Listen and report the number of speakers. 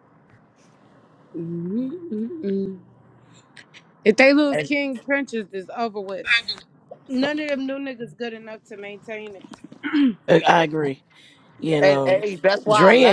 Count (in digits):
3